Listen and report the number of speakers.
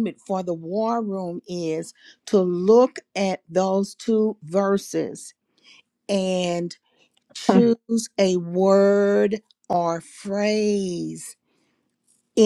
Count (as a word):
one